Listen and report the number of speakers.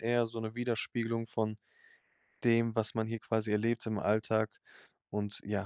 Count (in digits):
1